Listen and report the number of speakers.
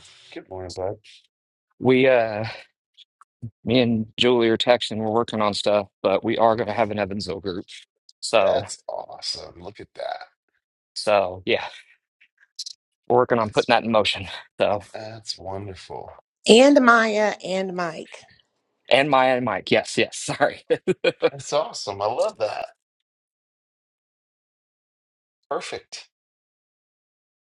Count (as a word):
three